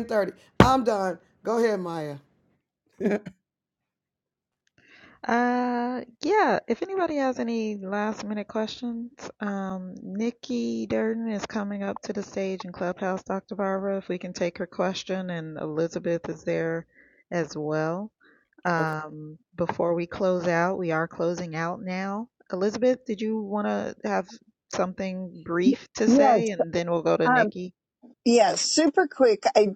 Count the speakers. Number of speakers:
3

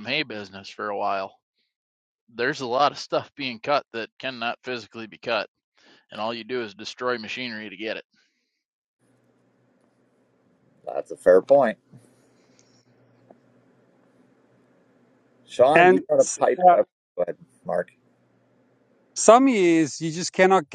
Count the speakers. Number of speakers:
3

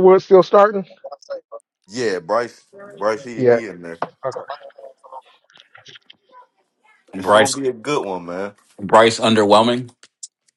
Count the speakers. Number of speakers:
3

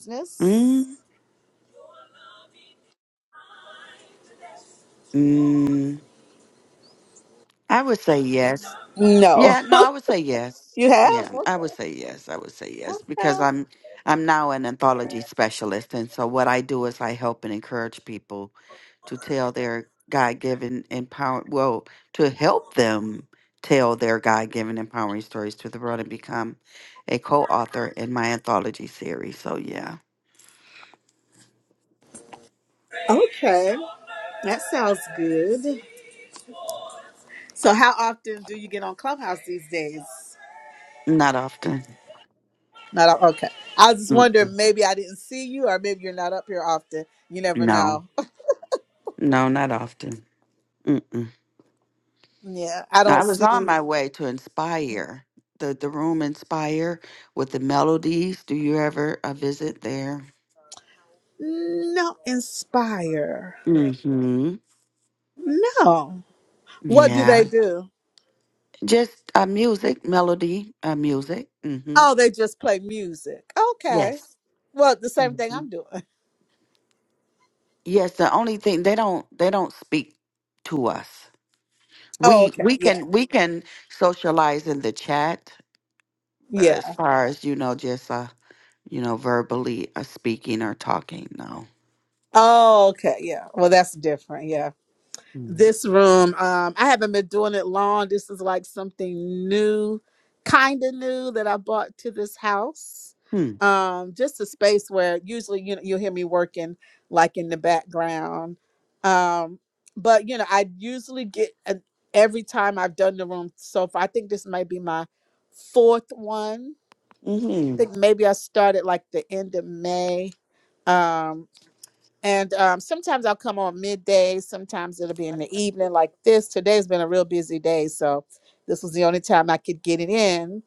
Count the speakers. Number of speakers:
2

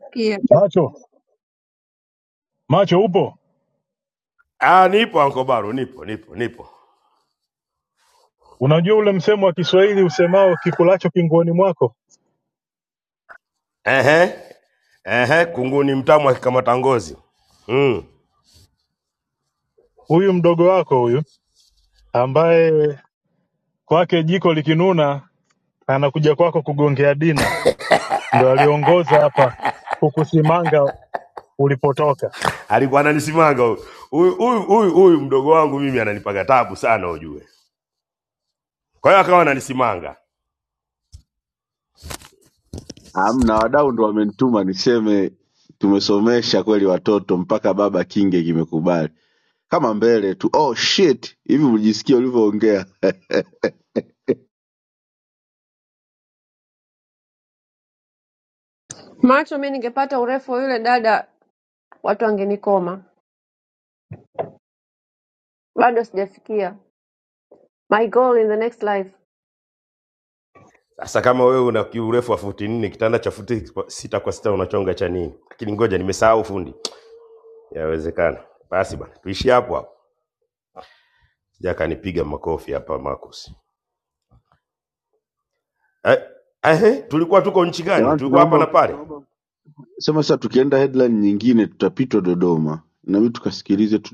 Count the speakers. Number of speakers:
4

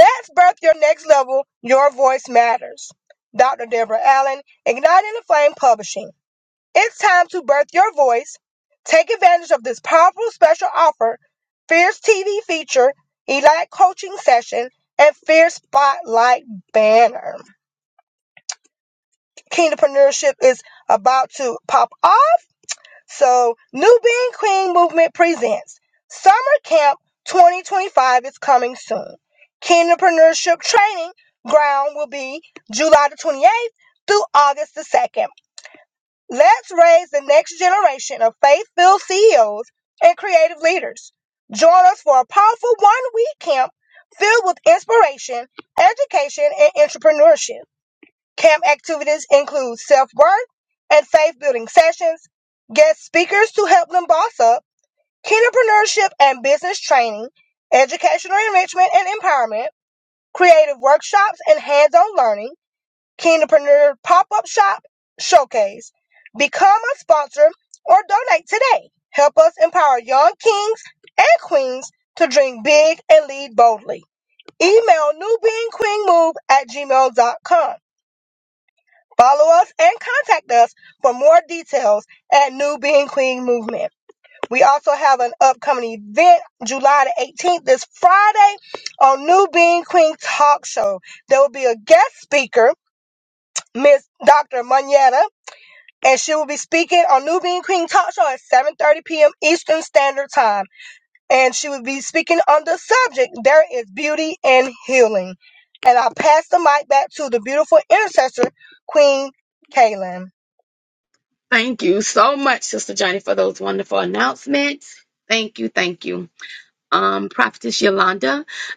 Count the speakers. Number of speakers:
2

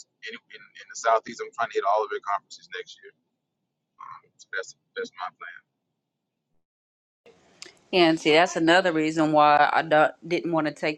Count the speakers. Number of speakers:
2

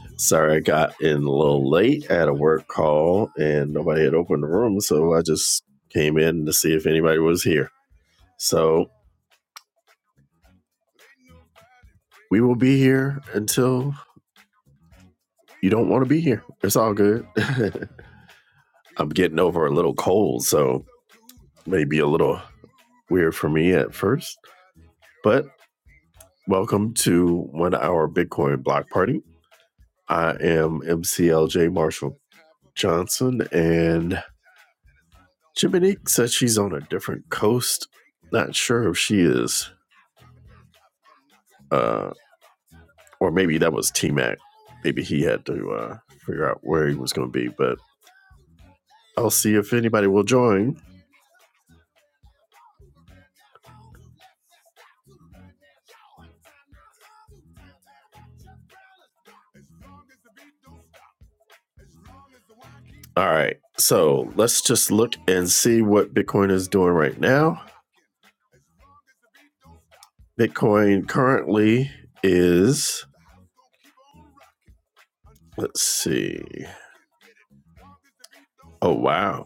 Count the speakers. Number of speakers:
1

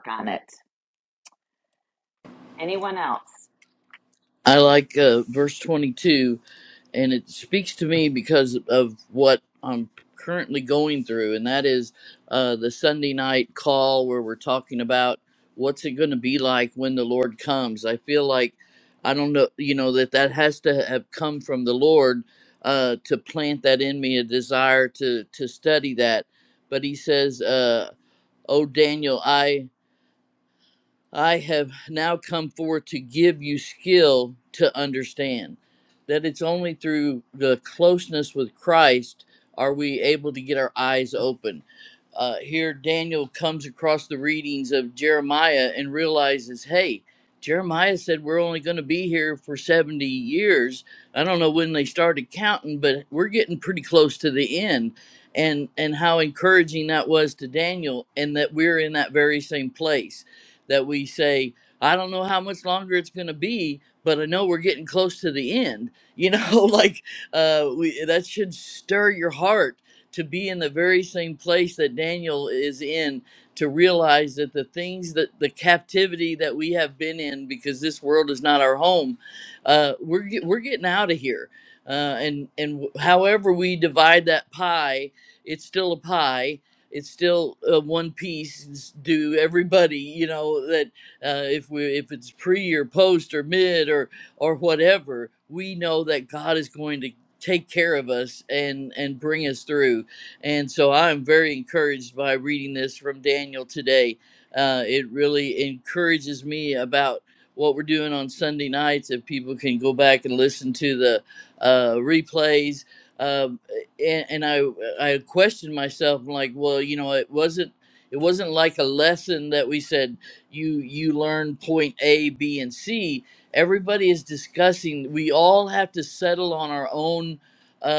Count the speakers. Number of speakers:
2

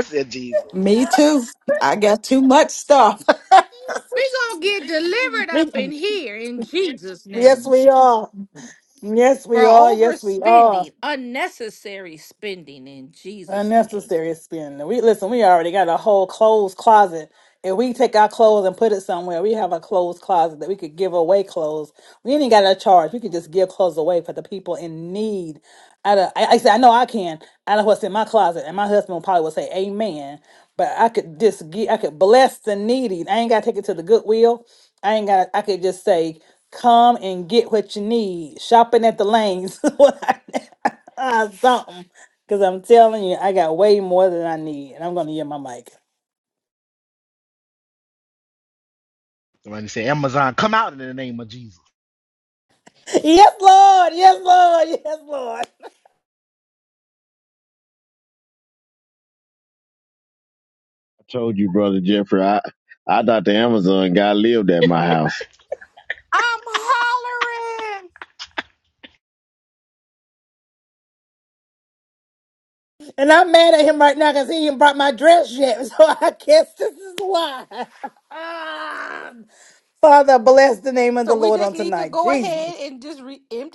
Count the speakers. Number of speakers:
5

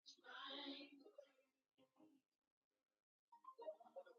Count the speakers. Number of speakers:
0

